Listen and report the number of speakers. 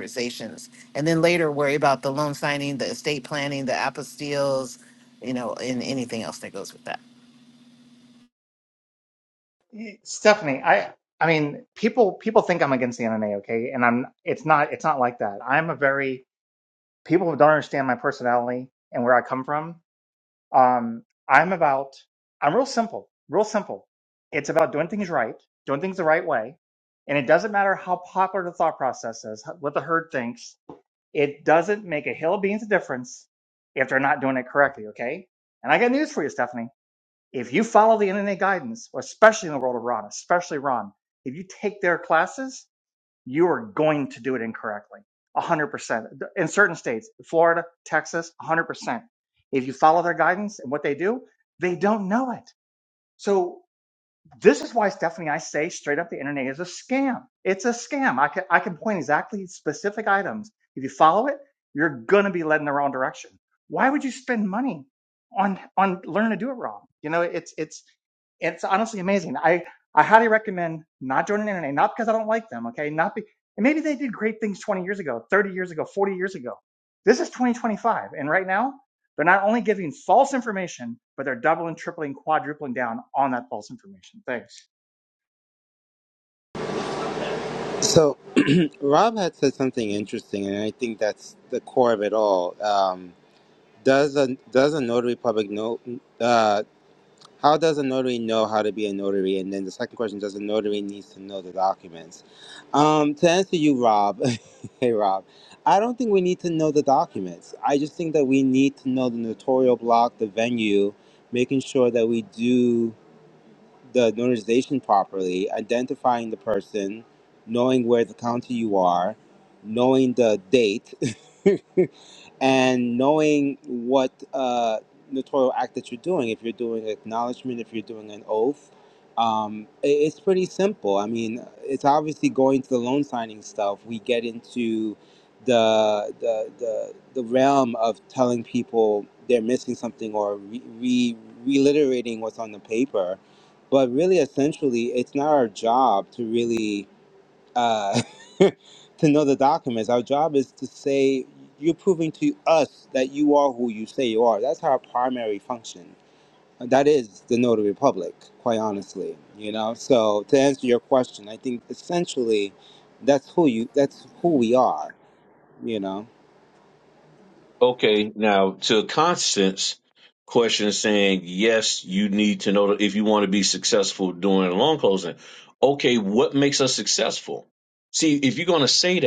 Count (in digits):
4